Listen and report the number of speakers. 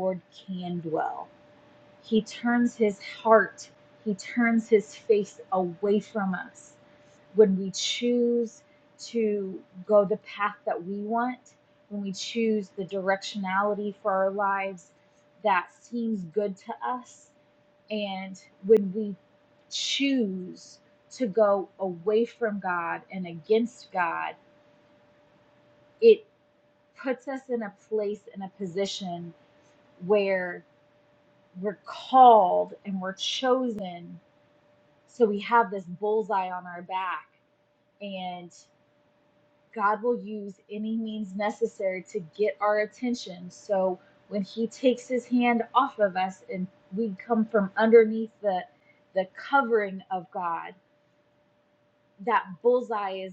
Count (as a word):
one